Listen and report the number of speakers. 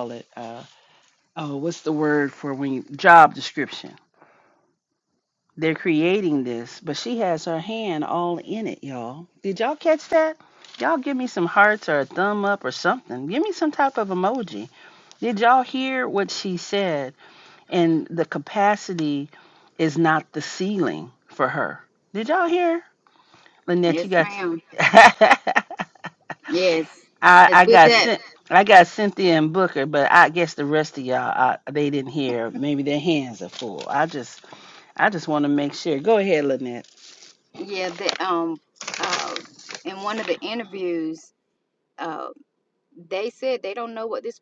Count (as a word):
two